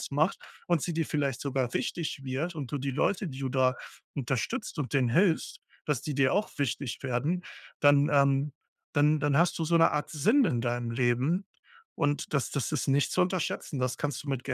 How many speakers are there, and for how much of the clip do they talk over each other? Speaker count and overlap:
one, no overlap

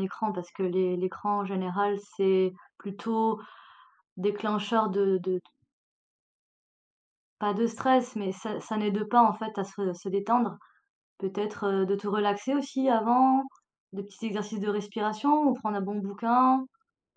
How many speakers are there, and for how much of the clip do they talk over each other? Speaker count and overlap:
one, no overlap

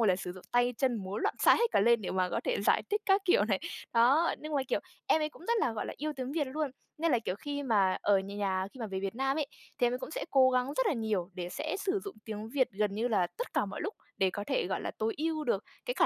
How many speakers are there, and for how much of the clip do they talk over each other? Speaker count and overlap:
one, no overlap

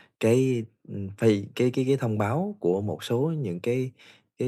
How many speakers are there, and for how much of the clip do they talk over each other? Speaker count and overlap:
one, no overlap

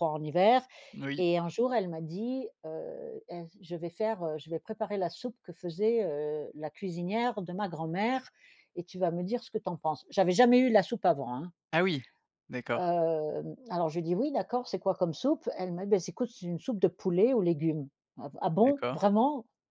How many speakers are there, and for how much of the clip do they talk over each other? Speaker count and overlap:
two, about 3%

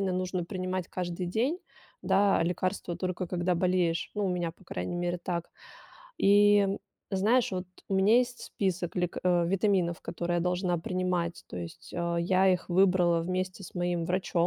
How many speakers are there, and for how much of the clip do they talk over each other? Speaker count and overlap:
one, no overlap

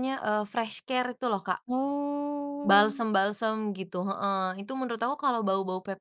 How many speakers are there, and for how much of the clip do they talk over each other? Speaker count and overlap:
two, about 1%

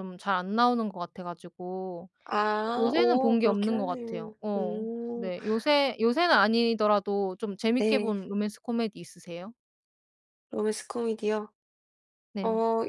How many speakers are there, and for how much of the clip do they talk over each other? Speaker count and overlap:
two, about 21%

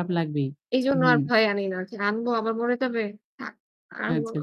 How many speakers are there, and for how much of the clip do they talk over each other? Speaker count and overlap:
two, about 14%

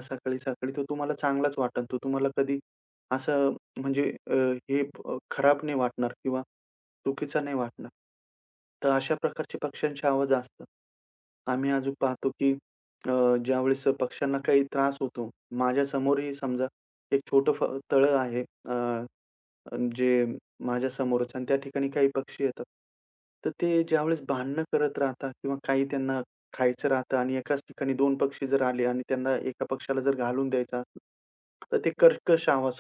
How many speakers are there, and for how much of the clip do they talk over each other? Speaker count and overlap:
one, no overlap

